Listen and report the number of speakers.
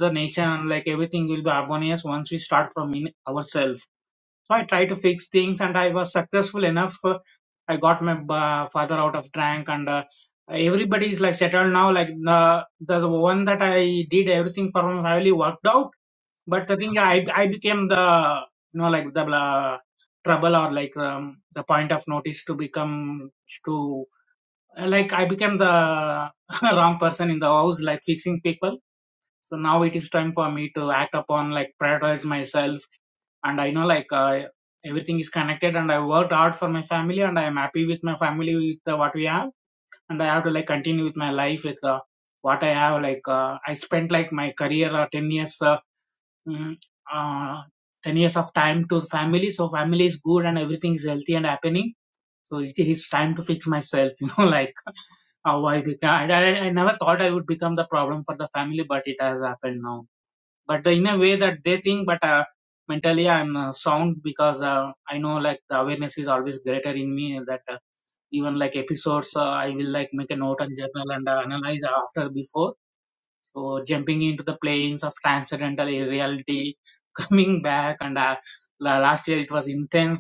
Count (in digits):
1